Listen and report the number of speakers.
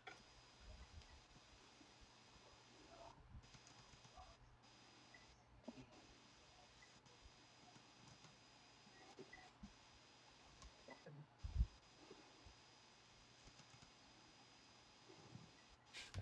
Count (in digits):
0